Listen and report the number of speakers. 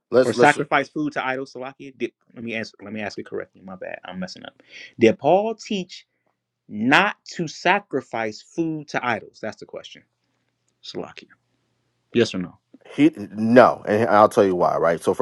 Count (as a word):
two